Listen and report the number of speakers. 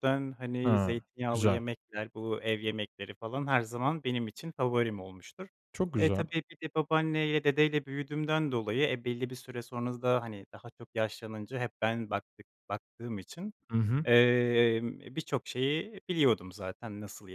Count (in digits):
2